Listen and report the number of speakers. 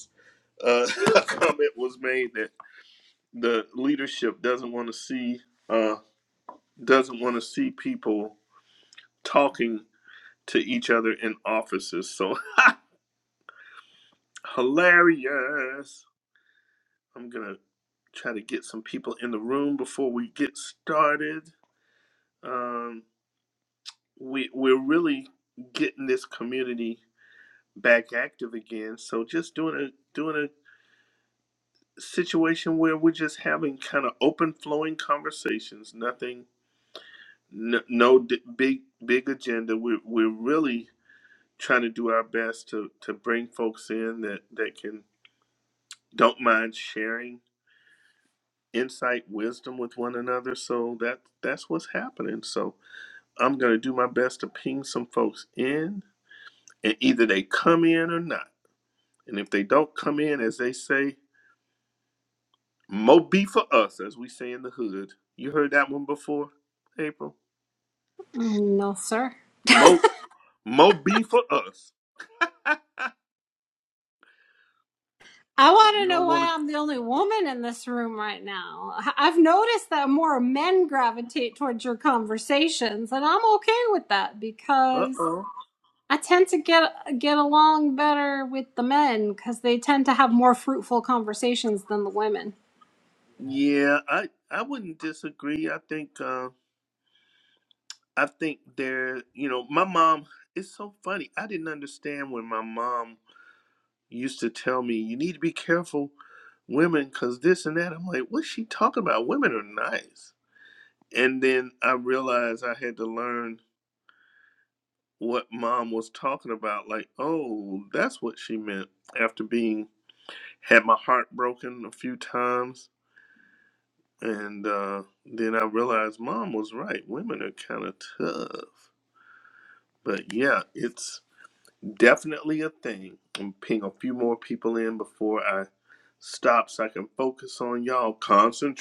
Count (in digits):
2